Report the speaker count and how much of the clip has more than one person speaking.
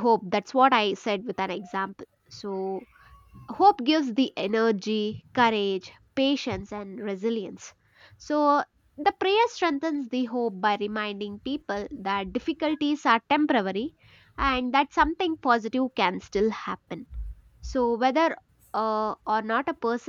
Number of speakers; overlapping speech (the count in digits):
1, no overlap